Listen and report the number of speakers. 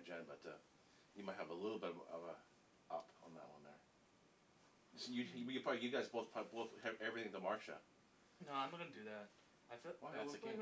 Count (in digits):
2